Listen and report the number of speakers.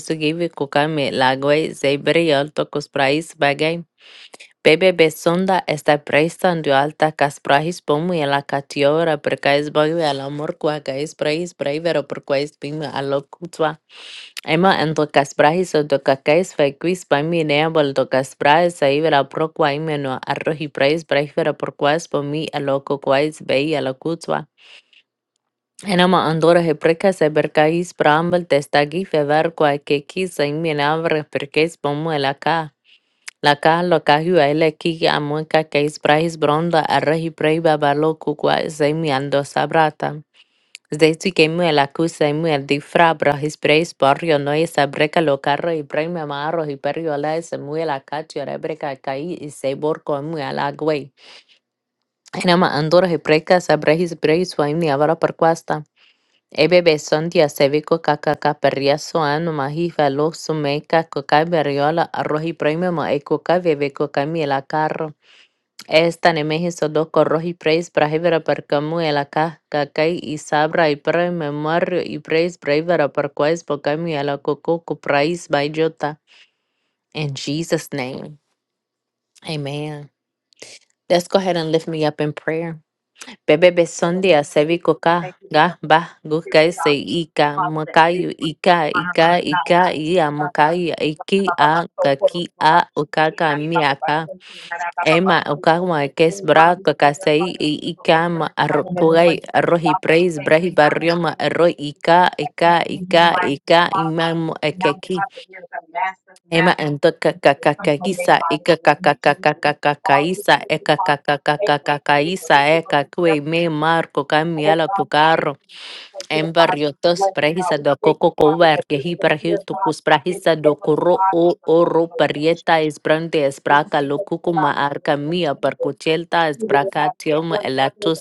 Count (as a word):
two